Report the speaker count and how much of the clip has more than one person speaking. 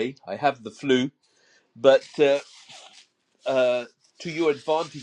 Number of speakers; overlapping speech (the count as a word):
one, no overlap